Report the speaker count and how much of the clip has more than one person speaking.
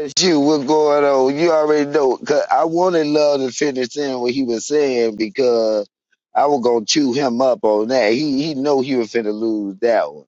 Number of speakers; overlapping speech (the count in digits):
1, no overlap